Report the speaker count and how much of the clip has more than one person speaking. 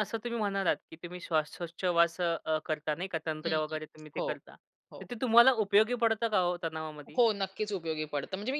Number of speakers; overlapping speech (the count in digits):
2, about 7%